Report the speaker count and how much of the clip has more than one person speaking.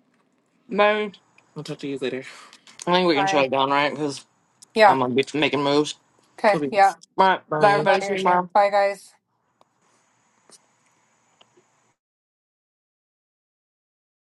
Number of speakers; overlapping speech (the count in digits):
3, about 13%